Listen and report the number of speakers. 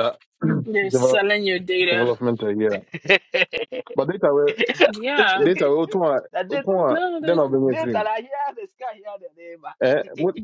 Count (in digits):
3